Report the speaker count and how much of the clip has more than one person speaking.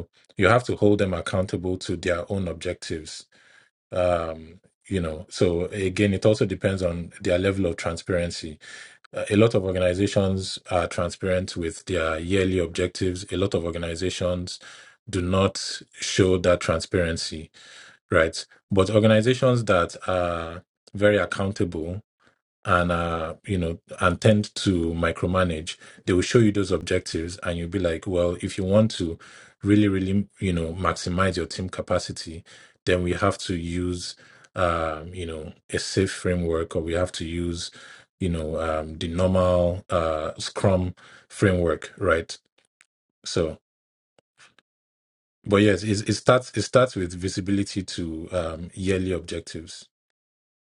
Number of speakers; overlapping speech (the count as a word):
one, no overlap